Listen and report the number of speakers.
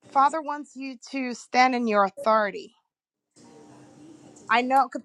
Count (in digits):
1